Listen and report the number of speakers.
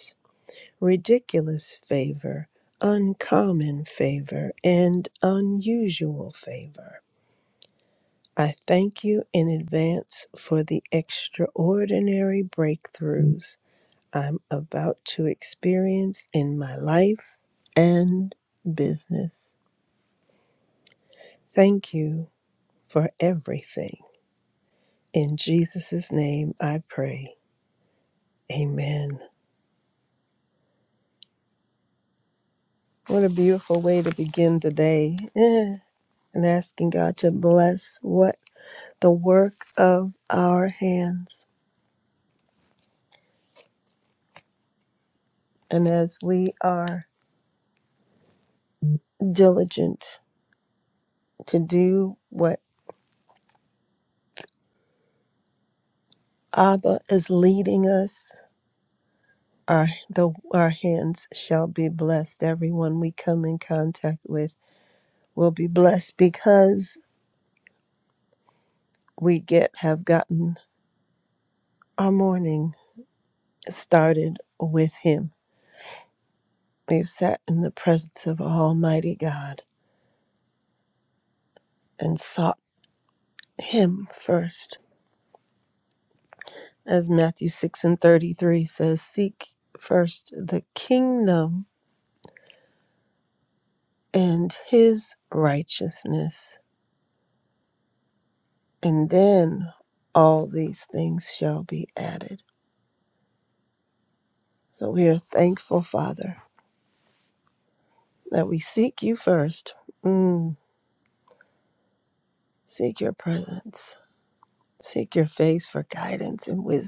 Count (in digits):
1